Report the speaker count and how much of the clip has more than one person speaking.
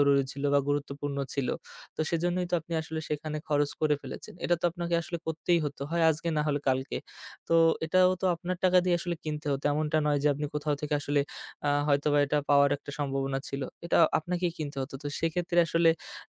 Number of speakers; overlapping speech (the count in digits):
1, no overlap